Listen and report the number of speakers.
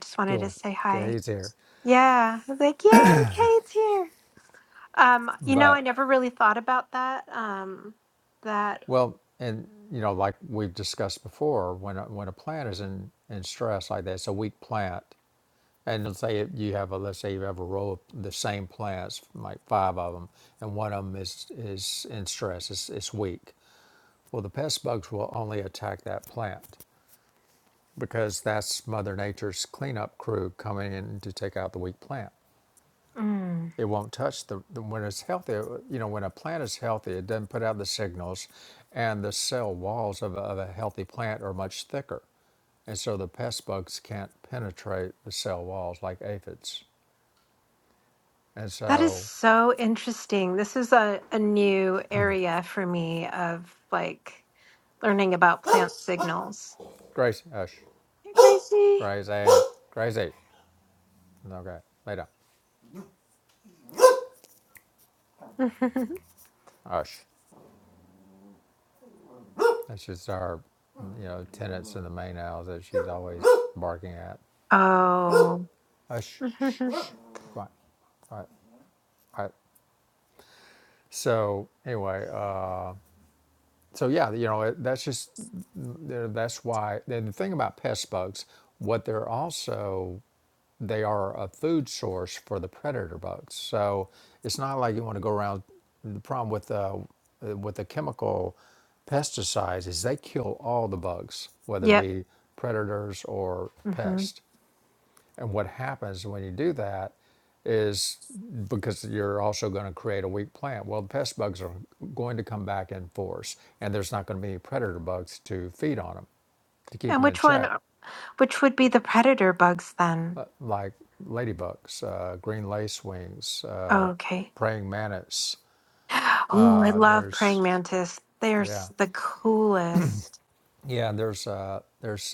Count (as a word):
two